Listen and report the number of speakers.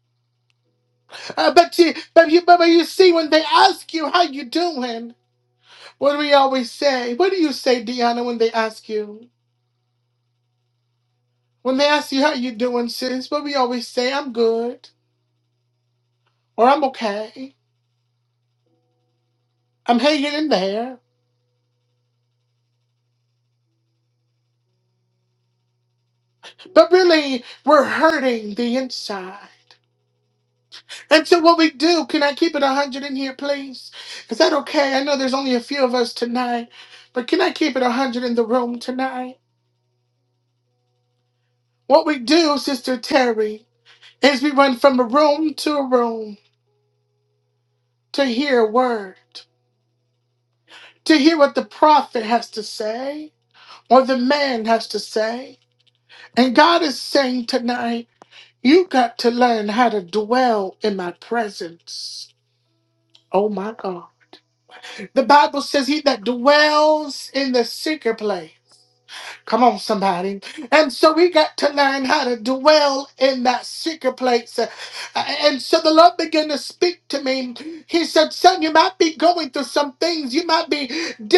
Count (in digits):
1